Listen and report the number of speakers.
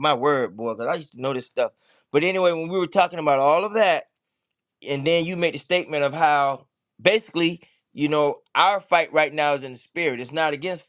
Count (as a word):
one